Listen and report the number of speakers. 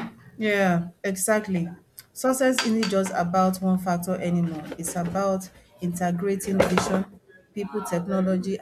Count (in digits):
1